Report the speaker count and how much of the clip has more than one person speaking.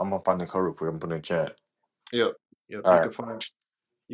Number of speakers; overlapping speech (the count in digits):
2, about 6%